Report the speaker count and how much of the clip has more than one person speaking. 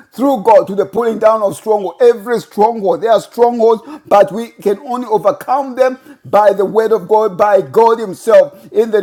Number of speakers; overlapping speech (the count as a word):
one, no overlap